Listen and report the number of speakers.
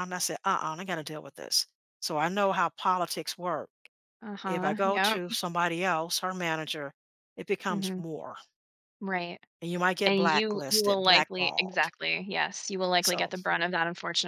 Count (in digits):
2